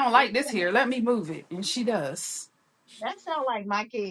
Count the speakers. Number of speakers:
2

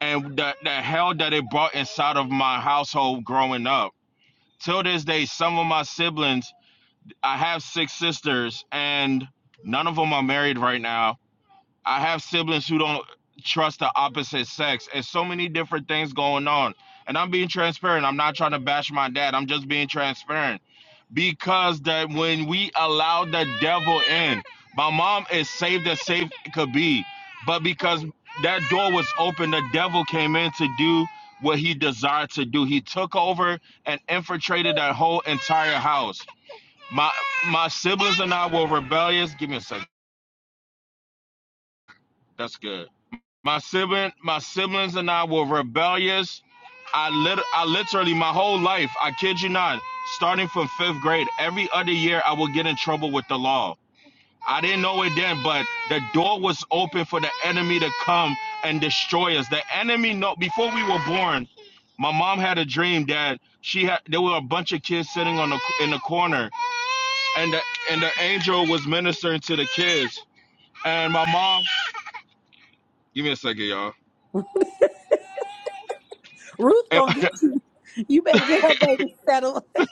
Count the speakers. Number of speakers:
2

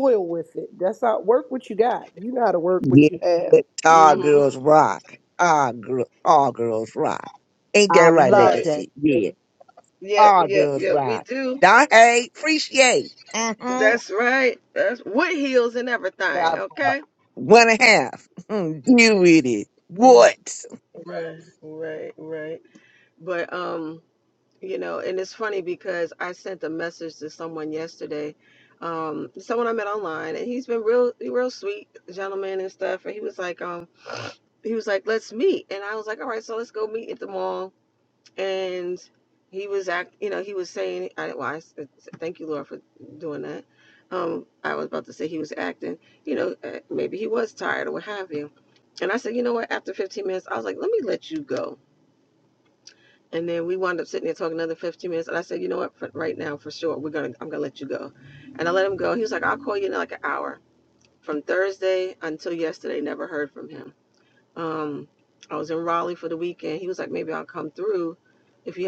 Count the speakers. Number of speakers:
3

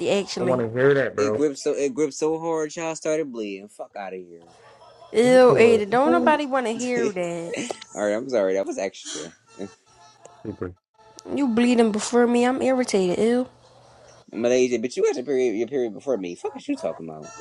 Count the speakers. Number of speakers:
3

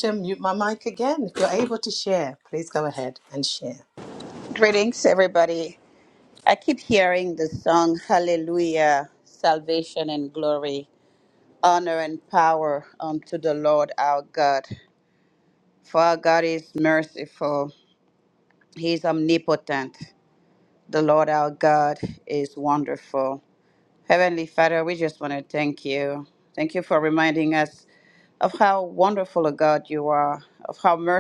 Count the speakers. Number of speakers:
2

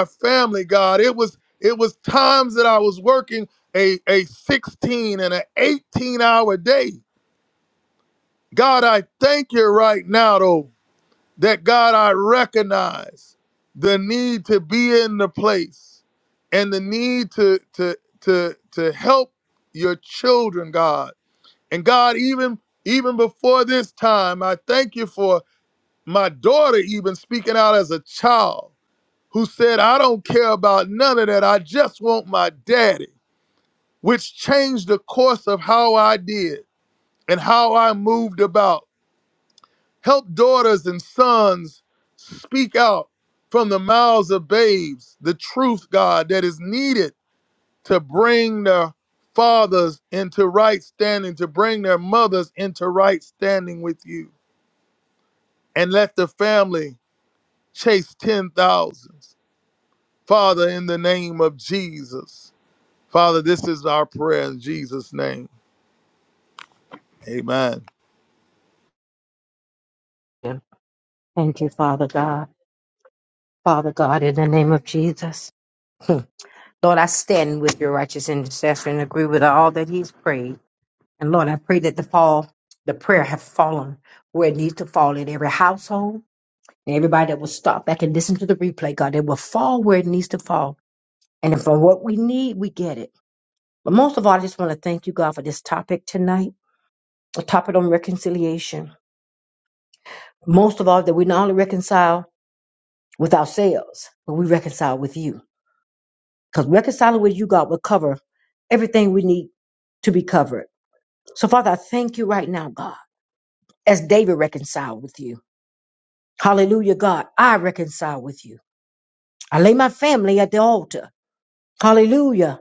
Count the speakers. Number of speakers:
2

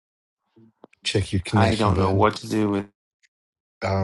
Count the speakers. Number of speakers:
2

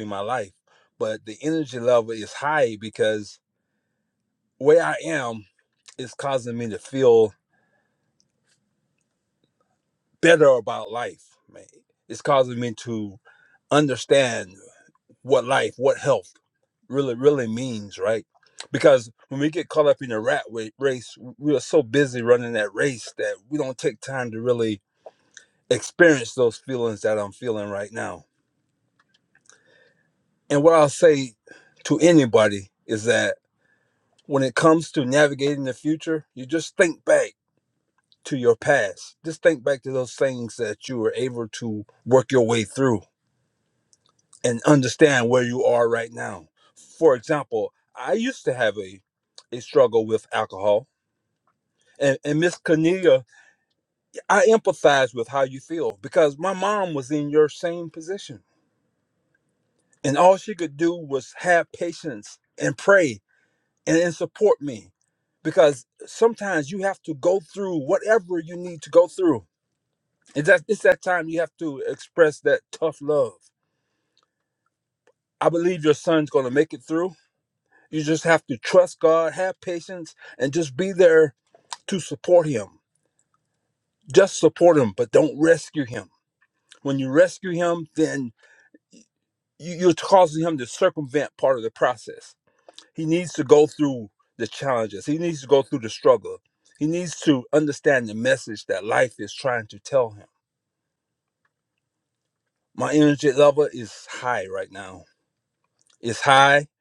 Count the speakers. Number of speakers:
1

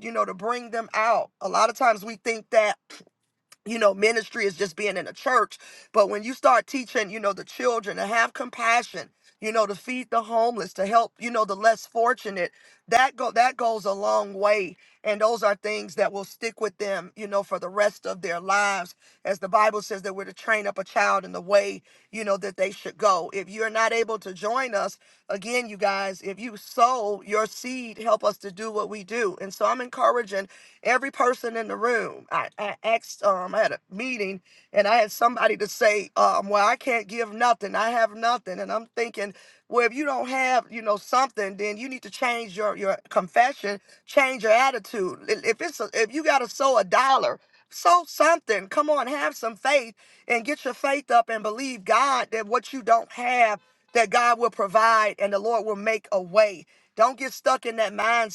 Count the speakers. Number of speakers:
1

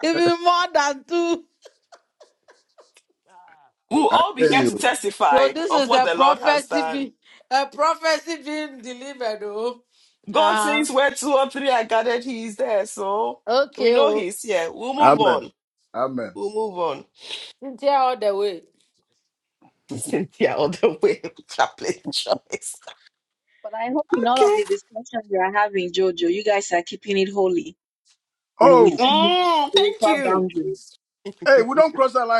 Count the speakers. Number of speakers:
4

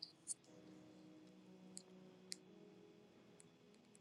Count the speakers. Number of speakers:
0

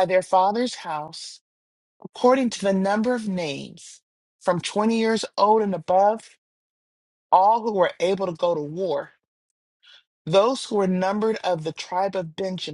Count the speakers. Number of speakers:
1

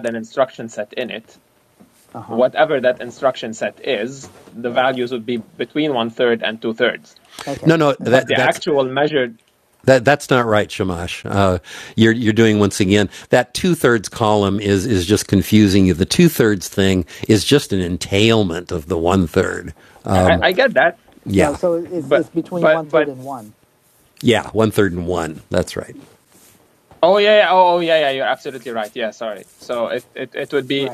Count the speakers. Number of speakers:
3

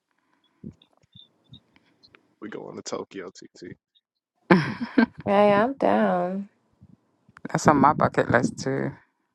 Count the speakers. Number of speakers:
3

